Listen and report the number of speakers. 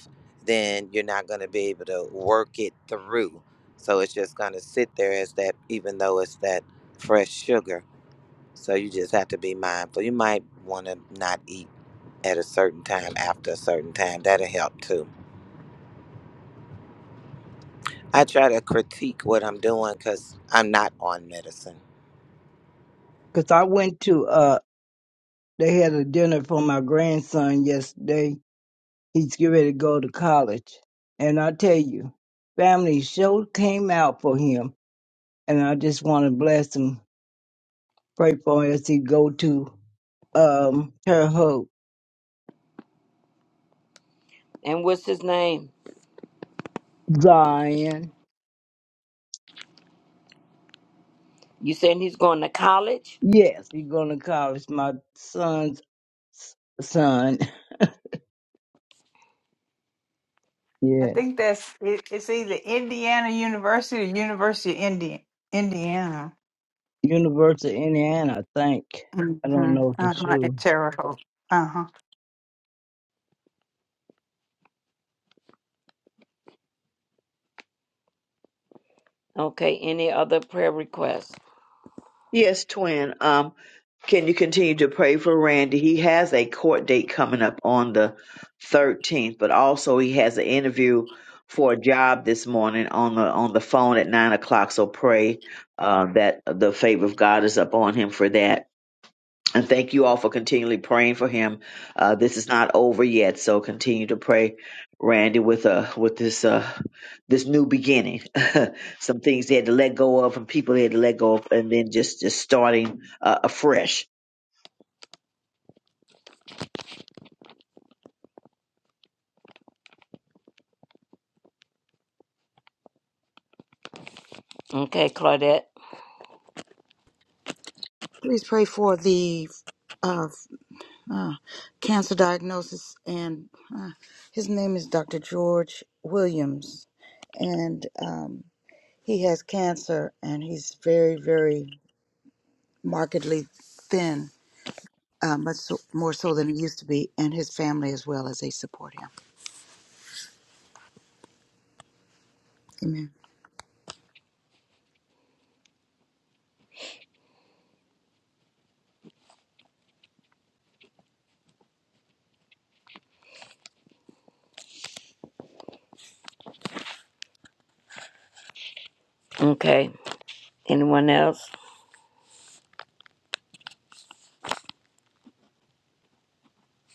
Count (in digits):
6